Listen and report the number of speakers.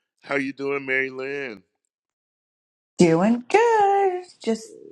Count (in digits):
2